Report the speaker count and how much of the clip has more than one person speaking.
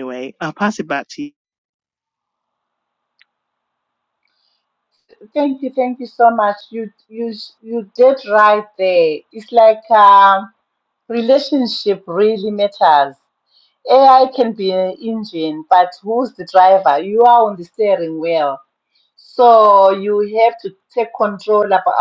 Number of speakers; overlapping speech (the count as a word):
two, no overlap